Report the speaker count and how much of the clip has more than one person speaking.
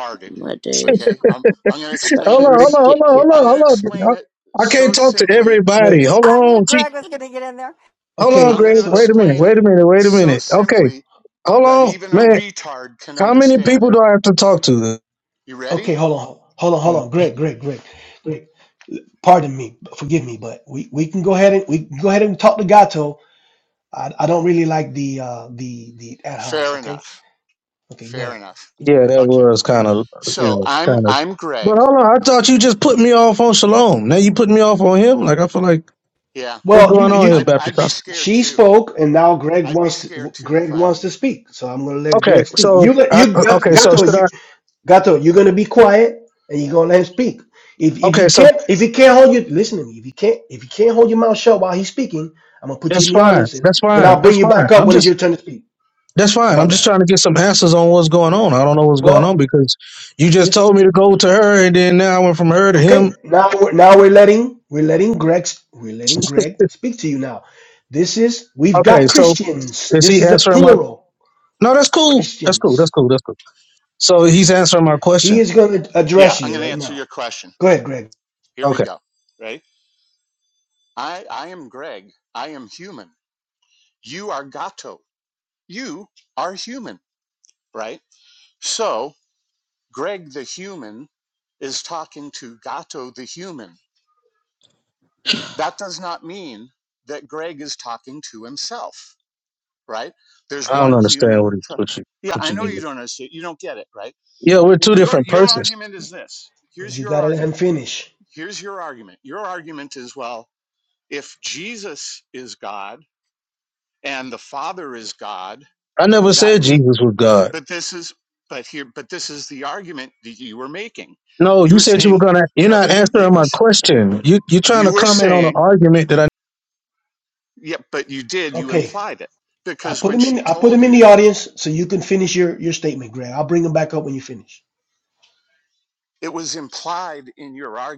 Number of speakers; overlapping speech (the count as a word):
five, about 22%